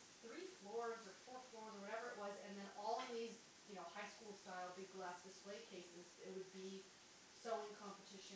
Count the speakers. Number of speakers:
one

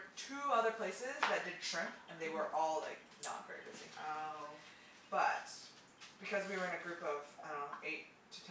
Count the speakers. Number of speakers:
two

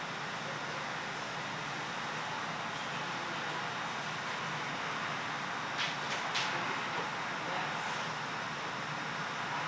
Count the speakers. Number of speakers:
zero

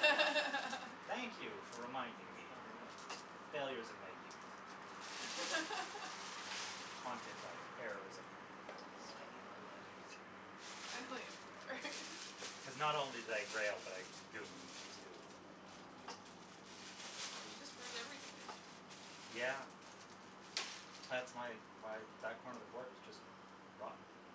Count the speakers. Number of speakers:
two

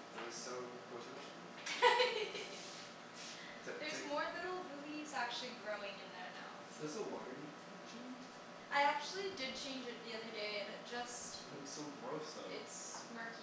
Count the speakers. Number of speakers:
three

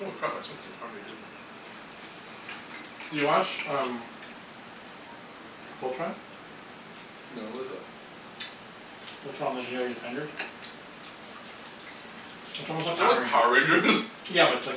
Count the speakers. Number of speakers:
two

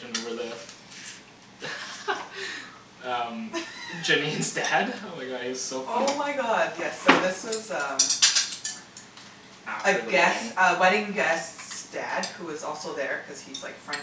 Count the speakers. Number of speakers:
two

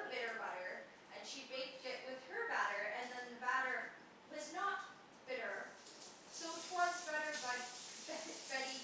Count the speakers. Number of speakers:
one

